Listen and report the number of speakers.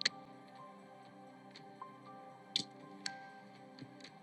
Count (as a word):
zero